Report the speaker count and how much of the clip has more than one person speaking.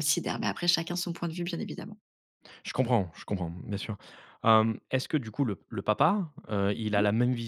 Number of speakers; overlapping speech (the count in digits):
2, about 3%